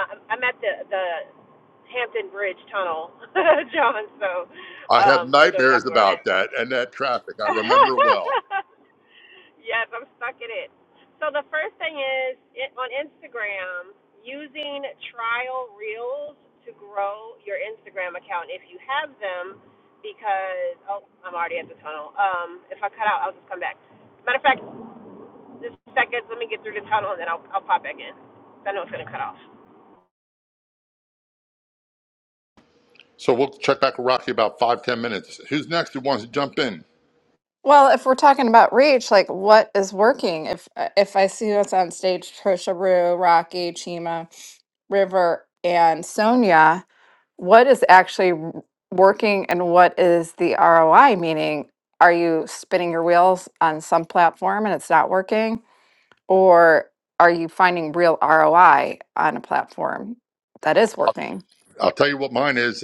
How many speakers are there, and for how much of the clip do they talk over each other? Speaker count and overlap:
three, about 2%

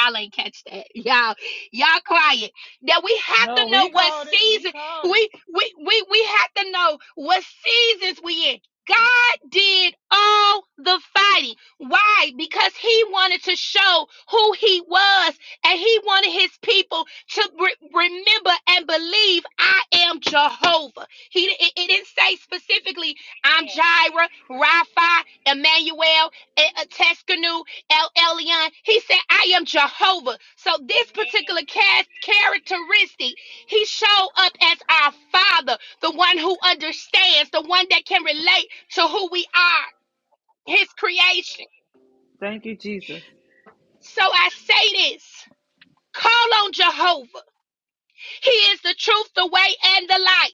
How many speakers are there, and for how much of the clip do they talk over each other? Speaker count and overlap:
two, about 4%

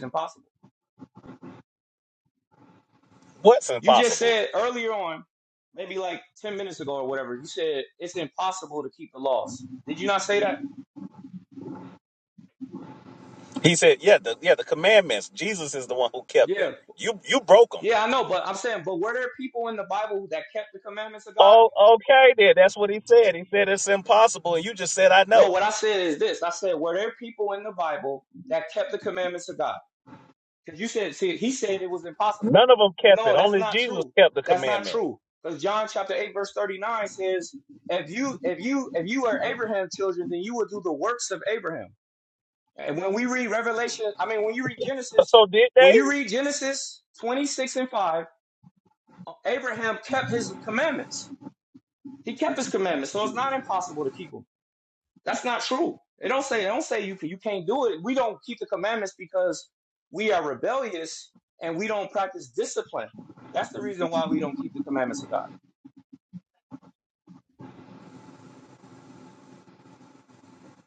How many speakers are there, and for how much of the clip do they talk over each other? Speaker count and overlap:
two, about 4%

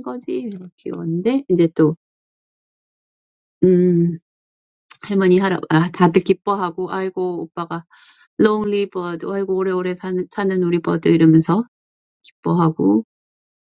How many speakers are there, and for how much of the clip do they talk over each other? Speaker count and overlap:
one, no overlap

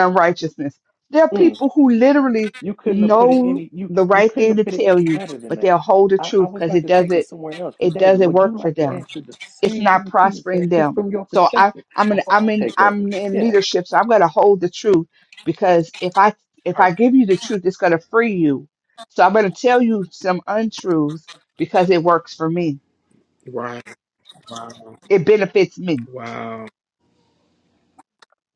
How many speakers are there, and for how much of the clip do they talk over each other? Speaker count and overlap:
three, about 31%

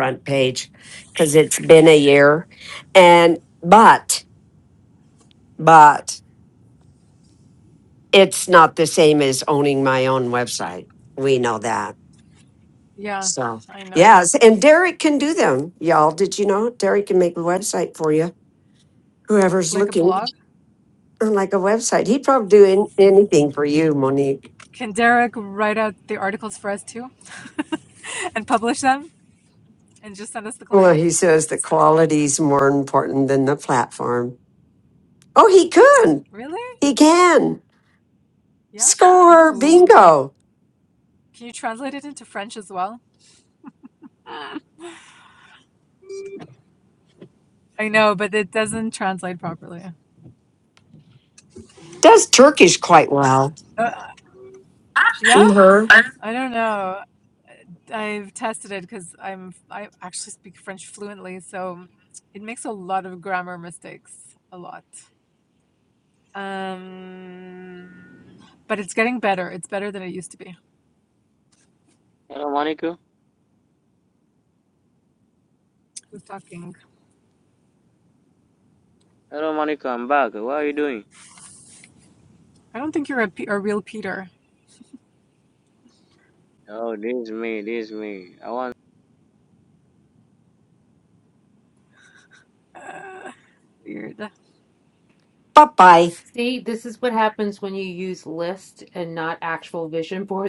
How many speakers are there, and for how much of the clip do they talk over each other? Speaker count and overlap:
four, about 2%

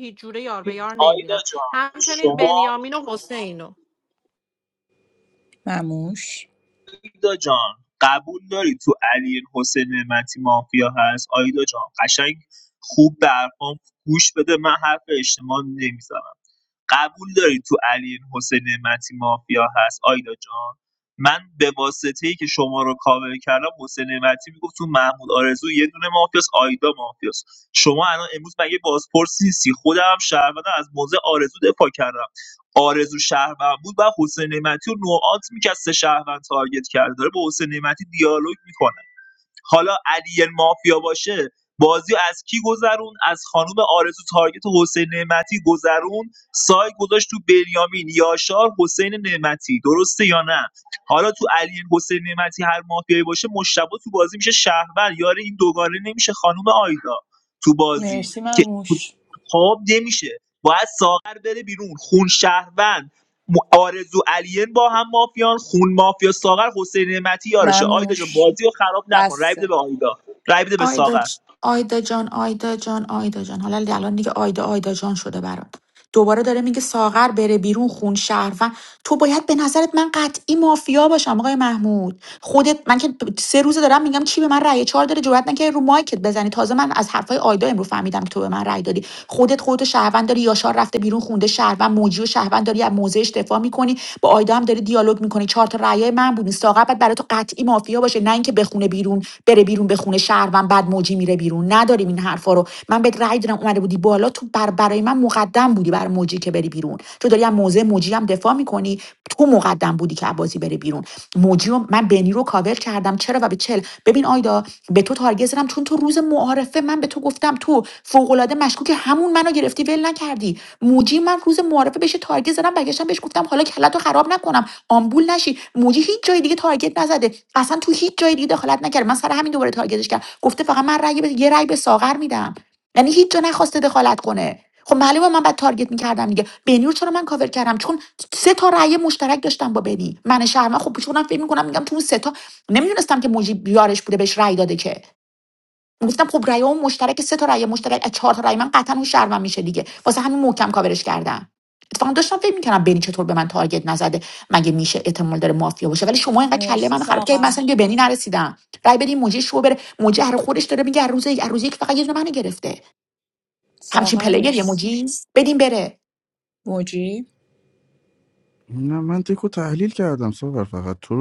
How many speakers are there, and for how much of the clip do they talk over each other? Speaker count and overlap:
five, about 3%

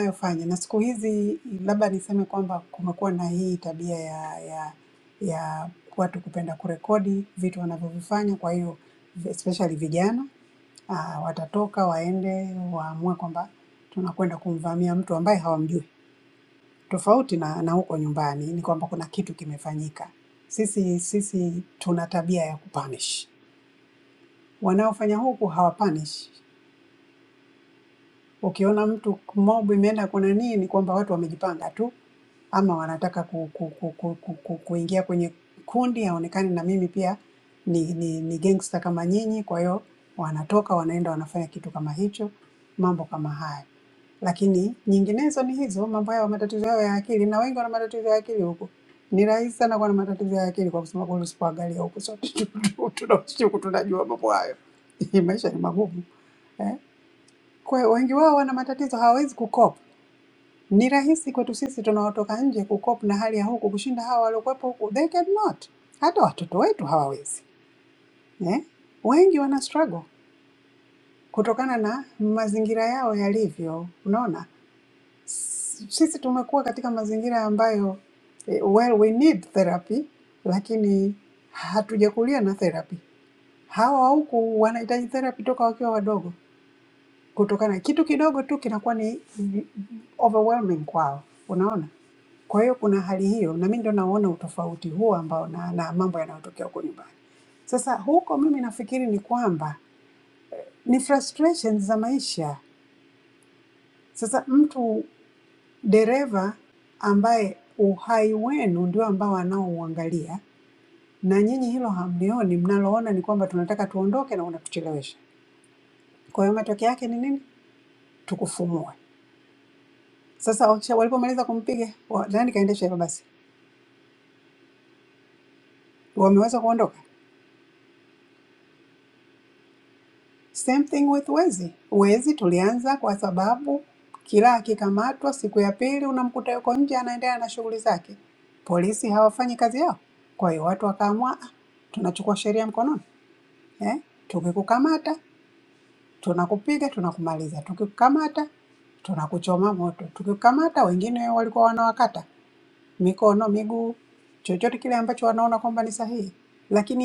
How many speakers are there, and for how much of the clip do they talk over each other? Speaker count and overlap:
one, no overlap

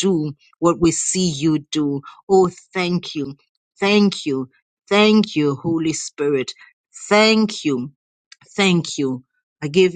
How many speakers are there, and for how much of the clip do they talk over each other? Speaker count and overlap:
one, no overlap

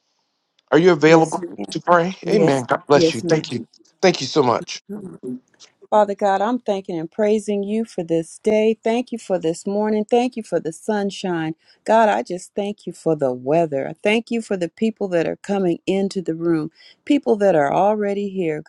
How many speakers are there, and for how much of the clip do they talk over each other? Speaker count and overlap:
two, about 8%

